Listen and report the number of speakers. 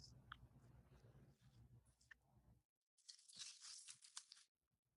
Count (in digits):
0